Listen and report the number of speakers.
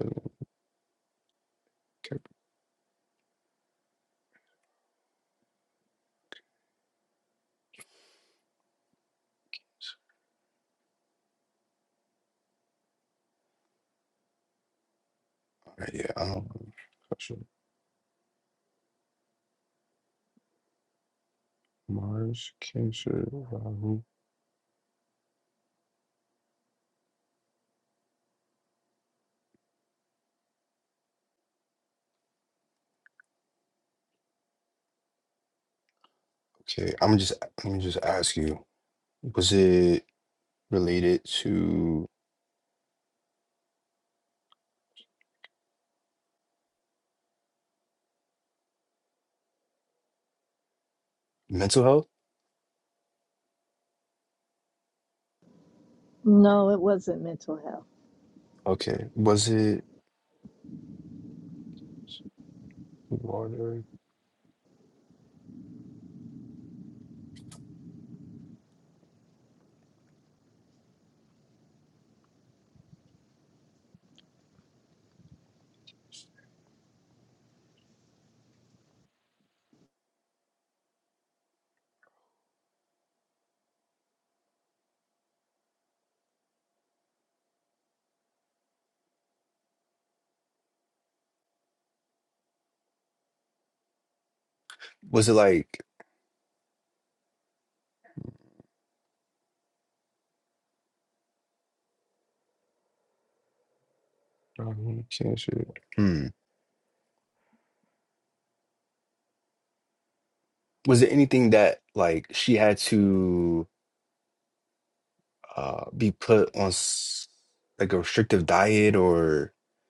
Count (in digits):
2